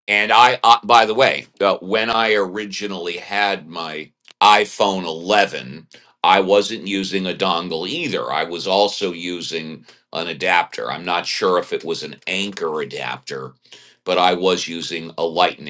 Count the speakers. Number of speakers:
one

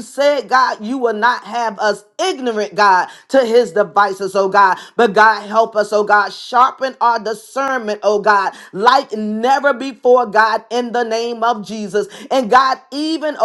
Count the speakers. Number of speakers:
one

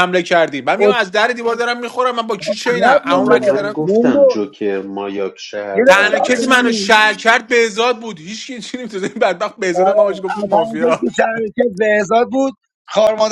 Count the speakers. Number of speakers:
three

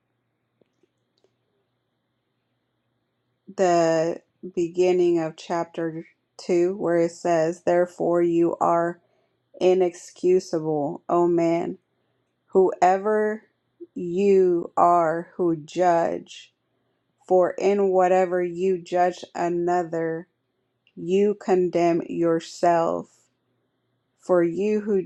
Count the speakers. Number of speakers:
one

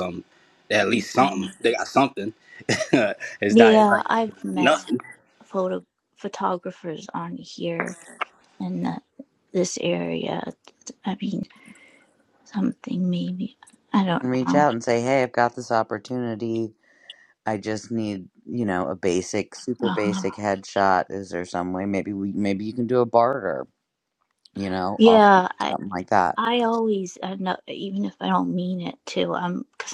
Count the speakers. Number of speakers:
three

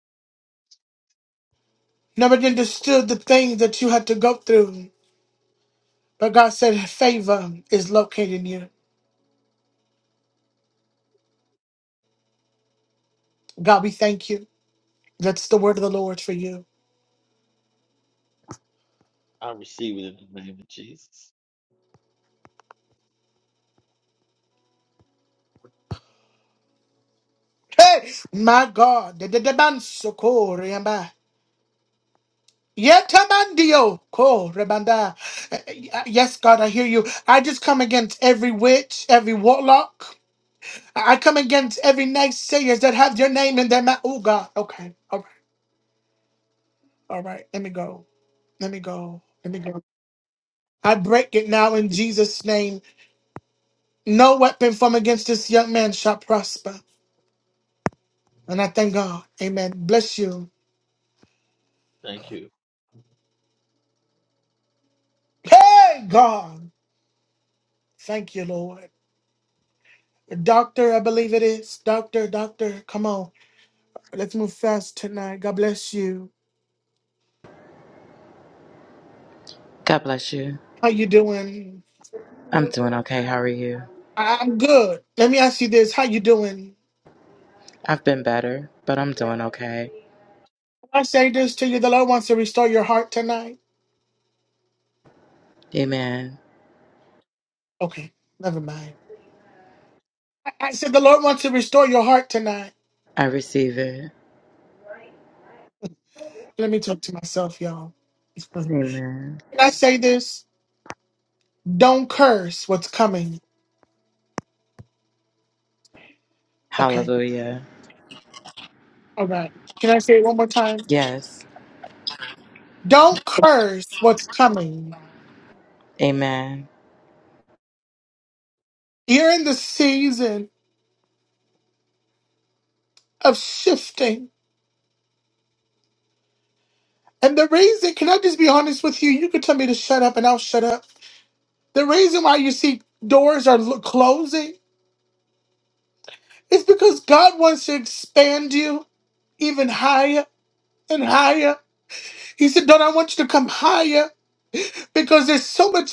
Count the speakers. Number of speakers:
three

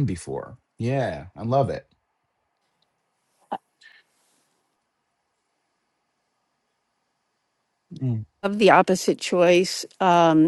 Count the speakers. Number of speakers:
two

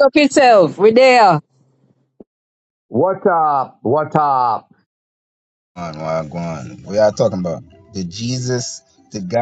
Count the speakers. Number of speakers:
three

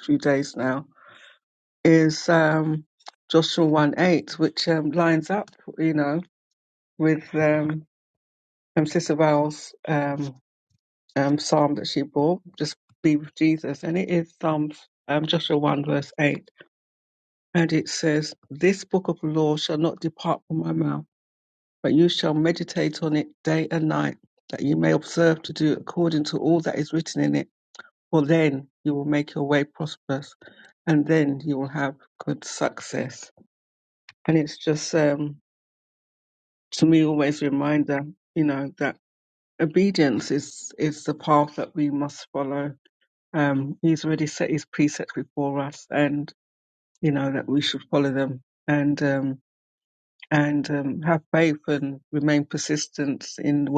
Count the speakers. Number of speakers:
one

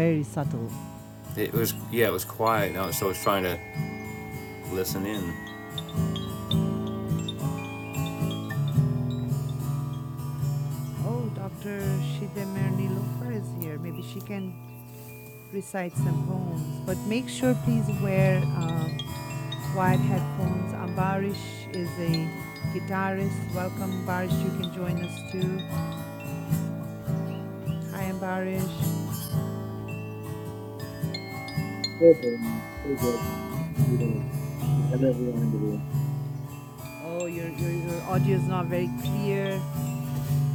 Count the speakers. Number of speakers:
three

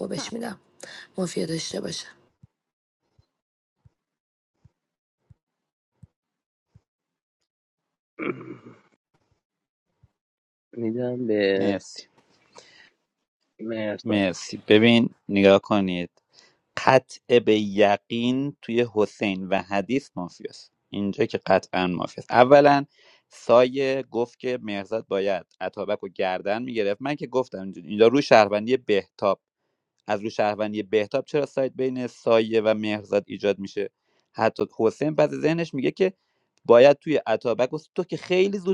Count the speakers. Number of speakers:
three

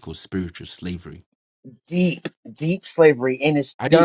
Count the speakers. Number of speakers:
two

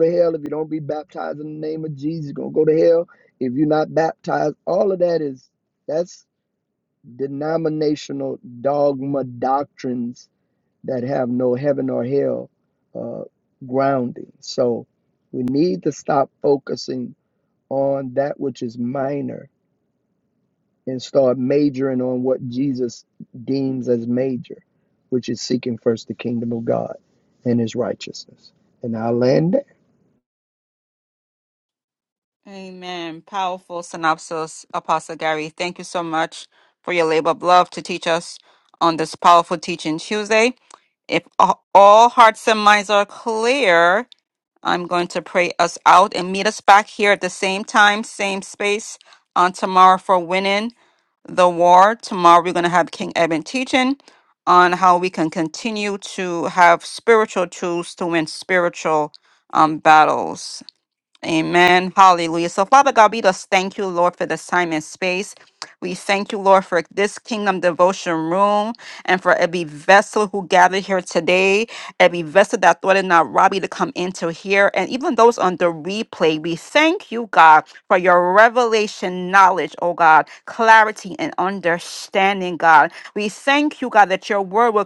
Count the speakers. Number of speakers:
two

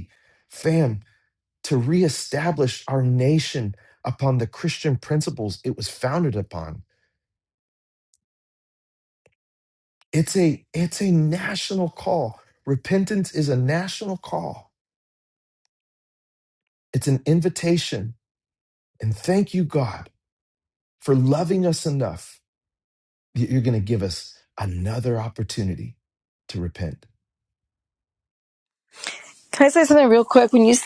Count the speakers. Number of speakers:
two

